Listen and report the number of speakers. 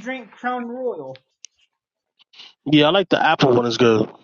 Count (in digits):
2